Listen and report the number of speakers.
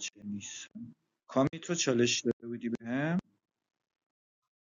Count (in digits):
1